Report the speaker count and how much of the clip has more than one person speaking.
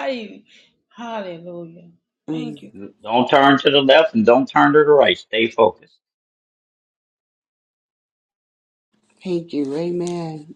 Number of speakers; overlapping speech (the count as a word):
three, about 2%